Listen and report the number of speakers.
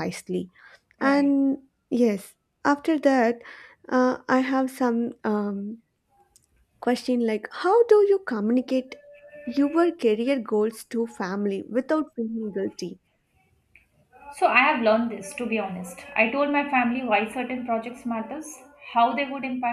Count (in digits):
2